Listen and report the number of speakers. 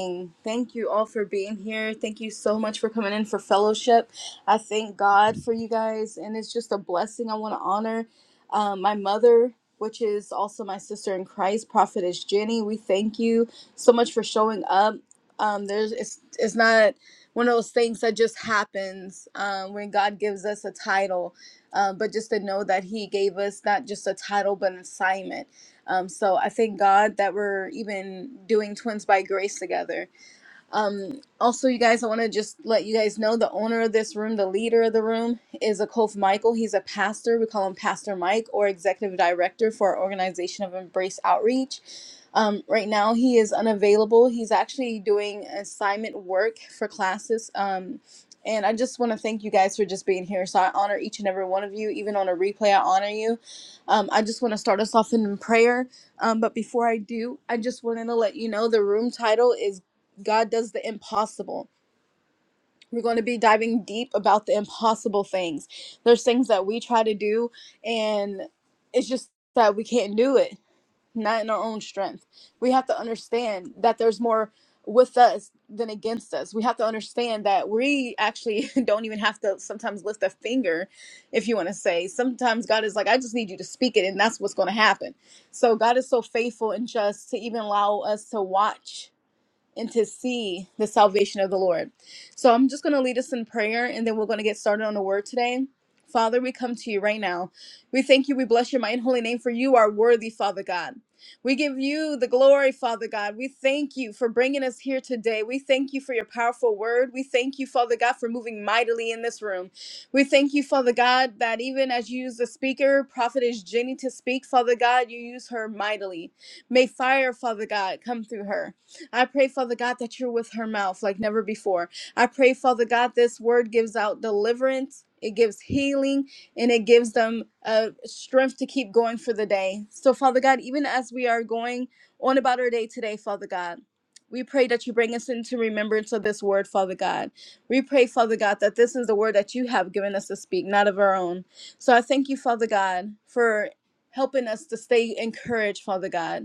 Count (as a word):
one